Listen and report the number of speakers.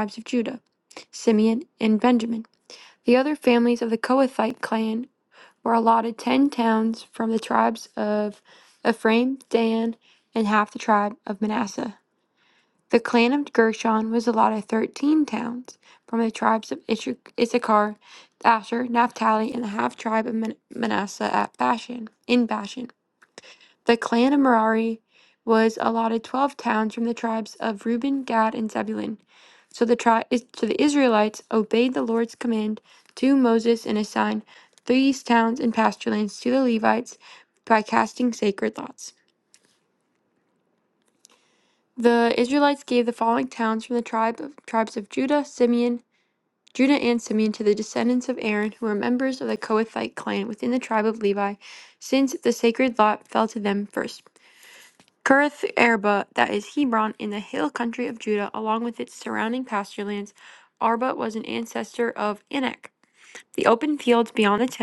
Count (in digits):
1